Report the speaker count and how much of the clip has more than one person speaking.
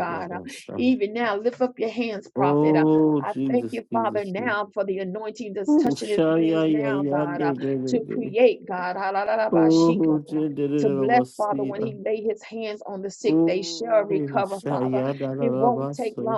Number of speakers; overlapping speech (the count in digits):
2, about 53%